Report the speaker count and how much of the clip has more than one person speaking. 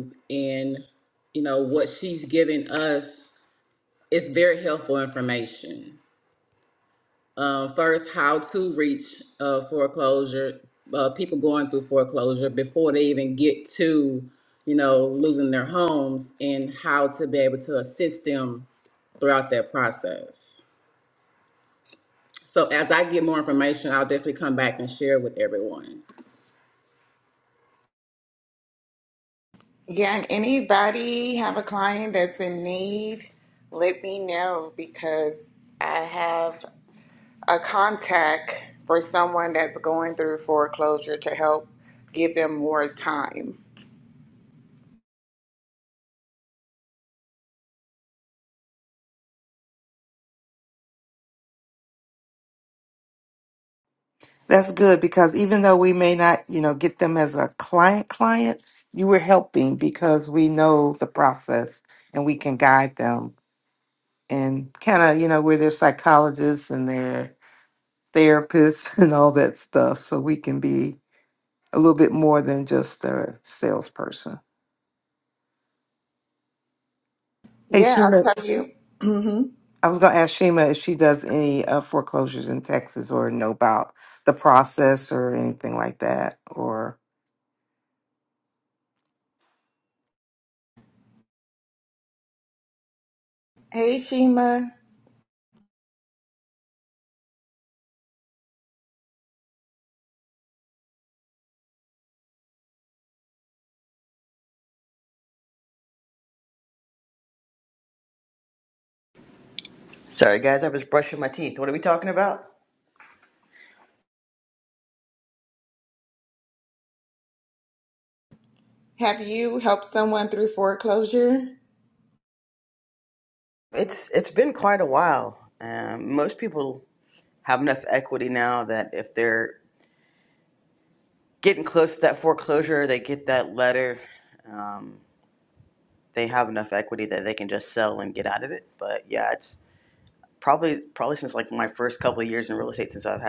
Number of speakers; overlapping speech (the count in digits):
4, under 1%